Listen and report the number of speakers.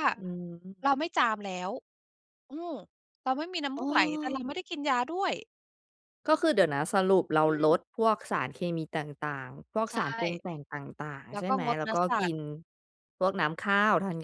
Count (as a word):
two